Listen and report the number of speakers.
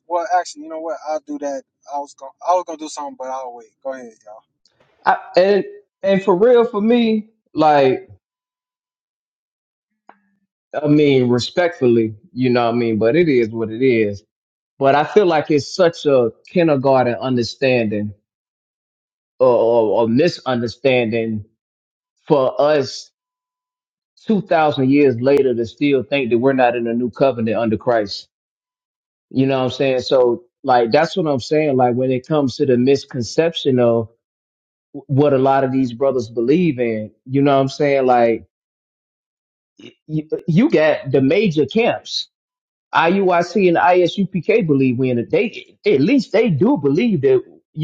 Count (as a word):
two